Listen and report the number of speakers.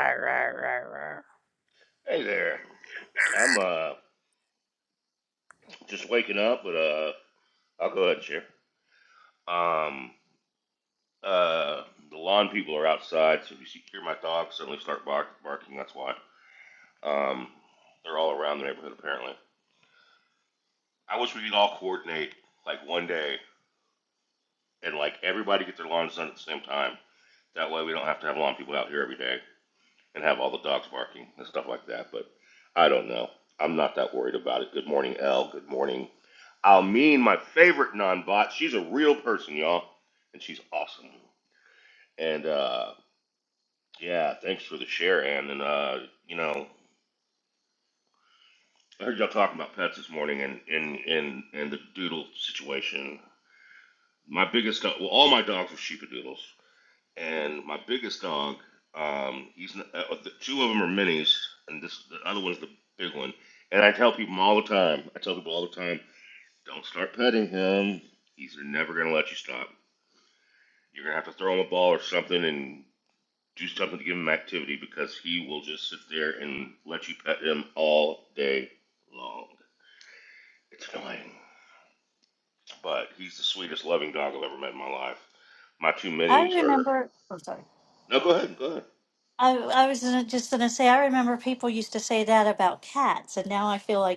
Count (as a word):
three